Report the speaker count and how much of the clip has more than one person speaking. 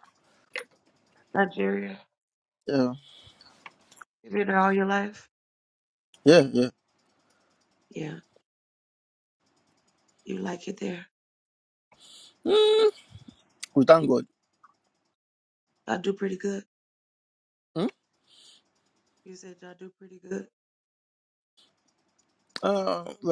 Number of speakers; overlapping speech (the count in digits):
2, no overlap